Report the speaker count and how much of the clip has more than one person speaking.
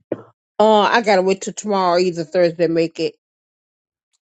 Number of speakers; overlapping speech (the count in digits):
1, no overlap